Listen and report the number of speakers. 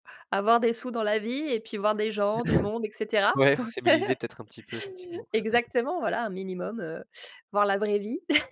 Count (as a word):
two